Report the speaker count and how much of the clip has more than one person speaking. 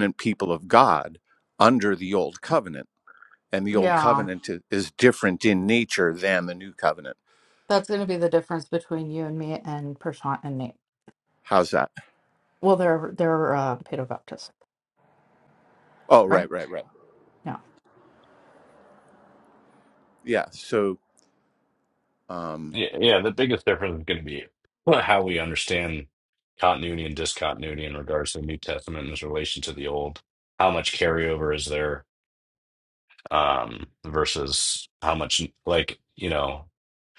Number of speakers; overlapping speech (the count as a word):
three, about 2%